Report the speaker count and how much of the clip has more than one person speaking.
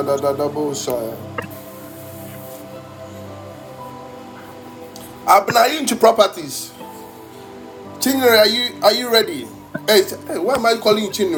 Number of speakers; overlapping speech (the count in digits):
1, no overlap